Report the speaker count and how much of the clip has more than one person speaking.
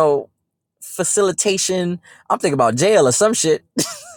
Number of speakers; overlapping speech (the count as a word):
one, no overlap